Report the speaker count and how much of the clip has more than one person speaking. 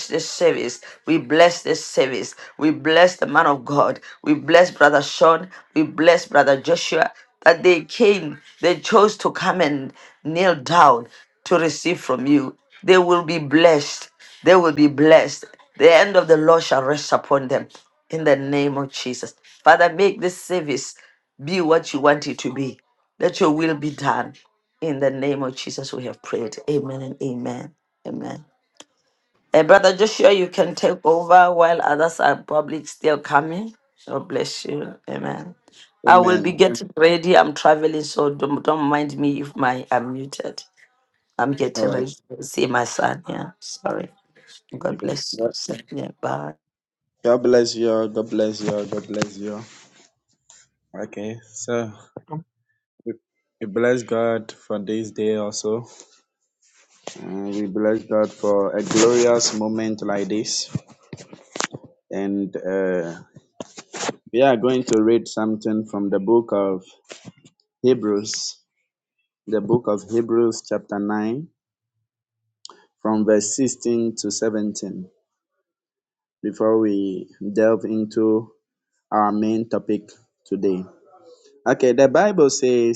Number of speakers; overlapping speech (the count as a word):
two, about 1%